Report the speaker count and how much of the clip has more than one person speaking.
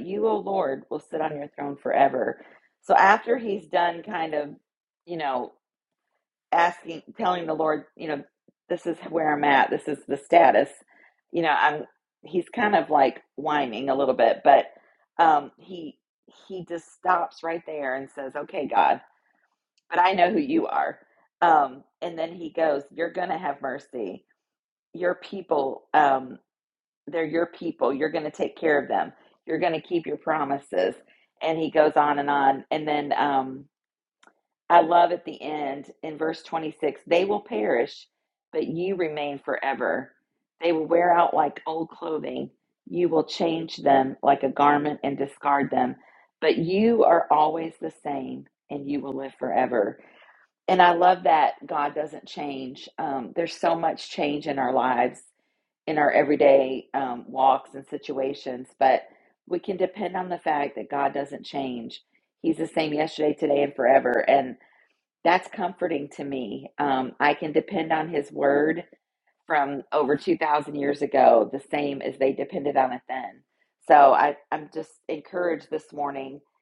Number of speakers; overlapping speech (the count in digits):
1, no overlap